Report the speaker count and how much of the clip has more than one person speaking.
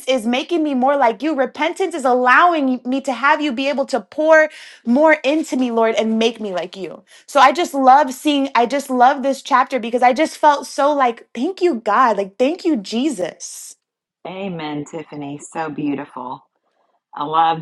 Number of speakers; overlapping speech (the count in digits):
2, no overlap